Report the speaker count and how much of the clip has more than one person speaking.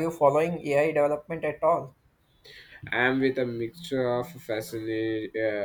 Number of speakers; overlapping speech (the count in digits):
2, no overlap